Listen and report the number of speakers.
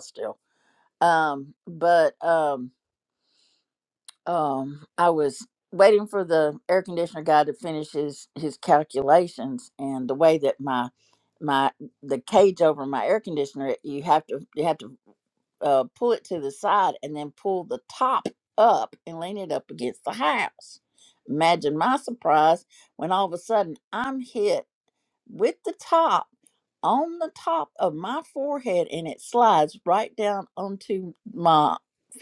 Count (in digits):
1